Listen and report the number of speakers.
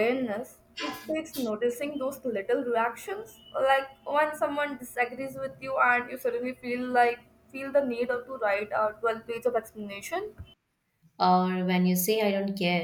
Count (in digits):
2